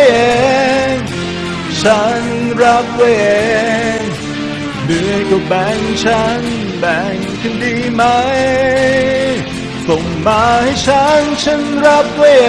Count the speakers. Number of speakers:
1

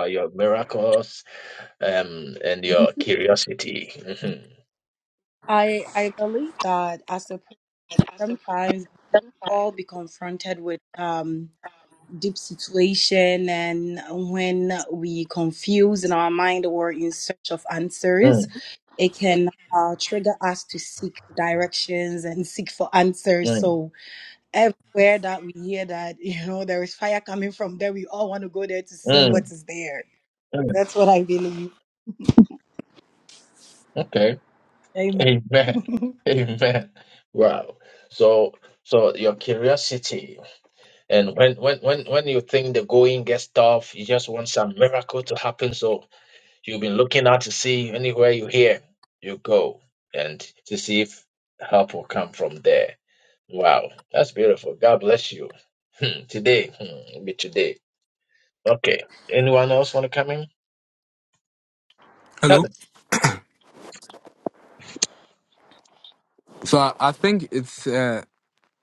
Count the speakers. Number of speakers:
3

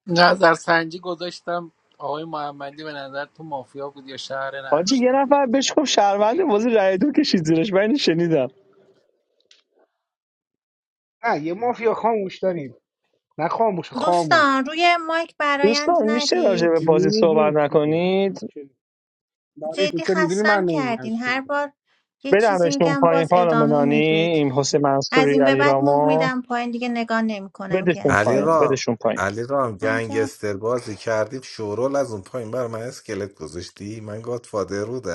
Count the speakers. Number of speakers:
5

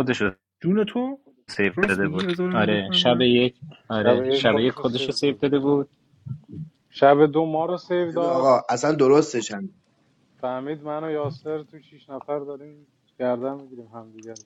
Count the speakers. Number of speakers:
4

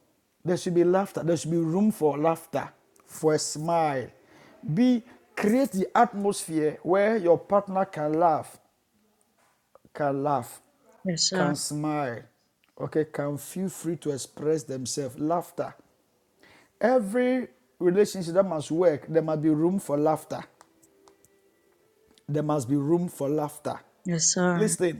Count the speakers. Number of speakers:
2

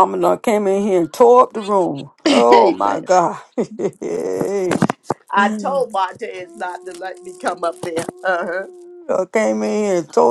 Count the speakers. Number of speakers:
2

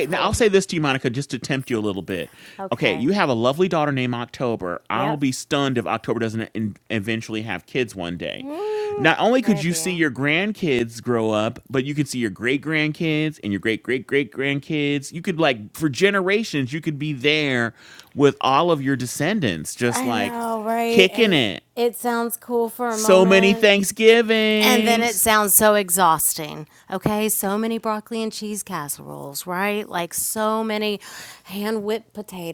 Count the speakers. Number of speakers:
2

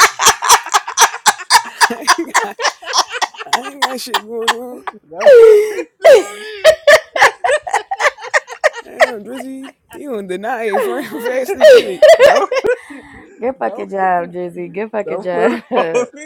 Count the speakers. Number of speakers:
3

